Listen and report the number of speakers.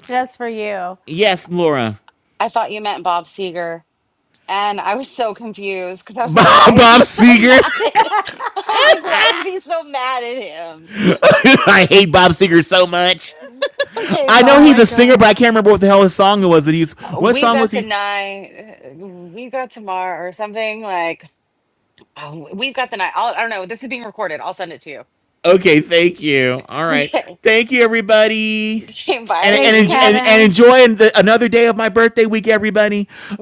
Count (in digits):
3